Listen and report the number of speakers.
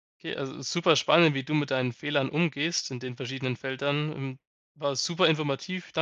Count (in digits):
1